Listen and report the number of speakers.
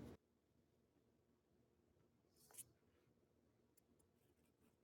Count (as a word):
zero